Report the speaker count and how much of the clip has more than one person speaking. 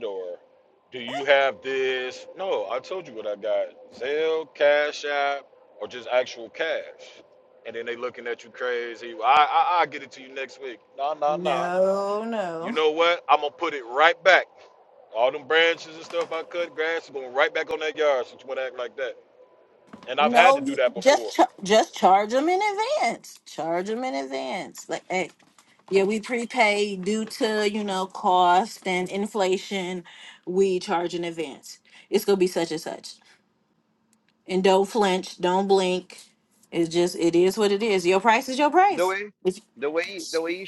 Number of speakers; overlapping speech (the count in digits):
3, about 4%